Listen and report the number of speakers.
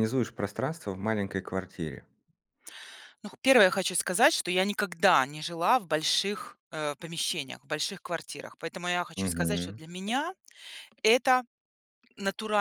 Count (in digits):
2